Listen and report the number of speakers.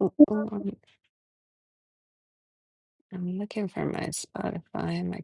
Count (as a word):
one